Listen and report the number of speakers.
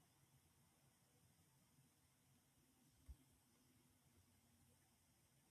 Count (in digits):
0